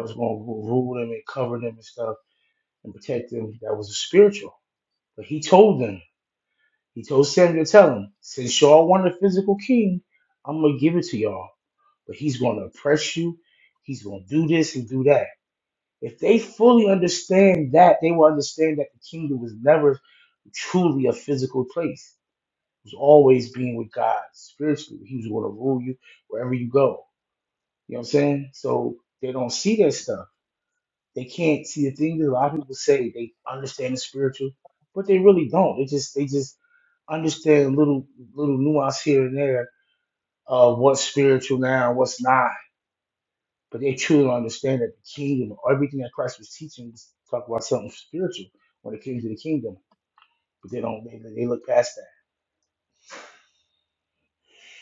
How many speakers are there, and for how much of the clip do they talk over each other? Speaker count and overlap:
1, no overlap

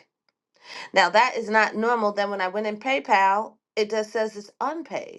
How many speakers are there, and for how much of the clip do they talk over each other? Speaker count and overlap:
1, no overlap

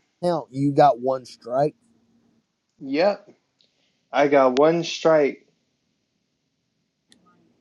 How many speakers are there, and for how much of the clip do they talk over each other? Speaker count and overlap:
2, no overlap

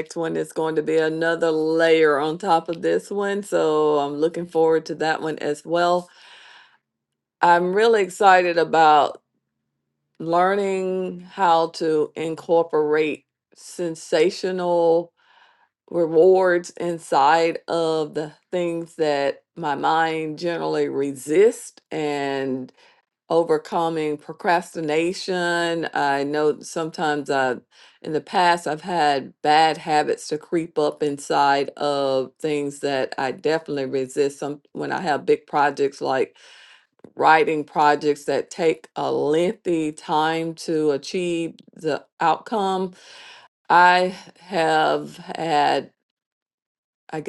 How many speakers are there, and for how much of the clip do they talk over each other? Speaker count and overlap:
1, no overlap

